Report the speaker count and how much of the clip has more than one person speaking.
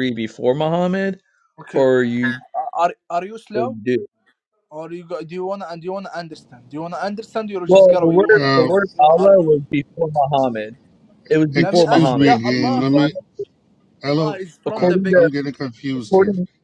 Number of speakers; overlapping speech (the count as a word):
three, about 30%